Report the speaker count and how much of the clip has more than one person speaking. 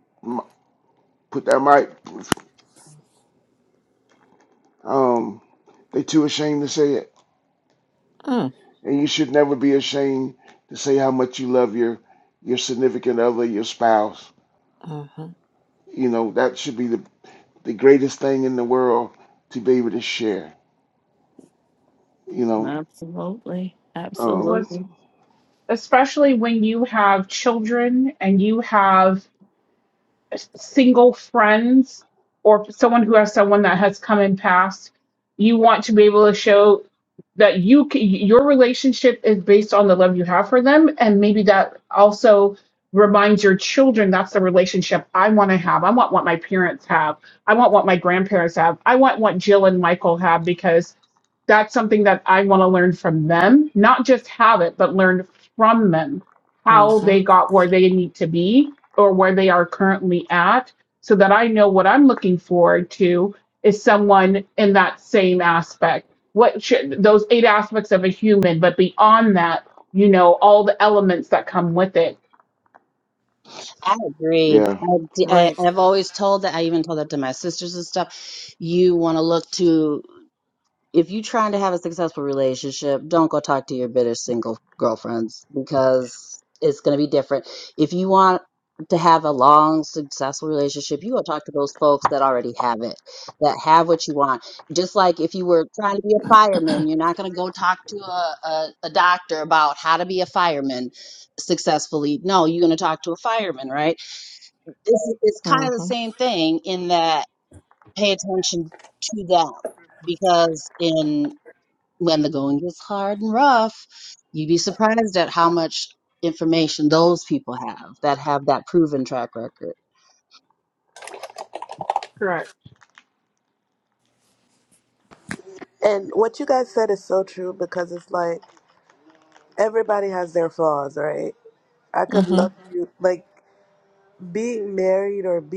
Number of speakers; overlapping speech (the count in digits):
6, about 2%